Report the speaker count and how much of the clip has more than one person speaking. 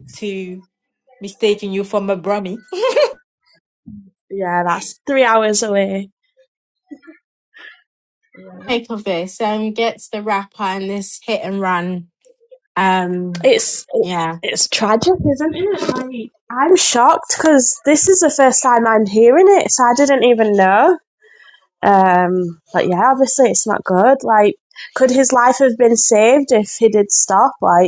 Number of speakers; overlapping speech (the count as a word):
three, under 1%